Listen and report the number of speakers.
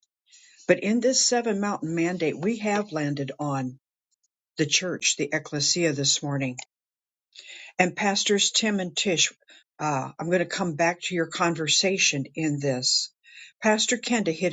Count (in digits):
1